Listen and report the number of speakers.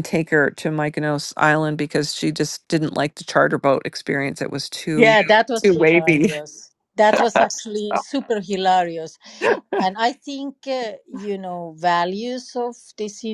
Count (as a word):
two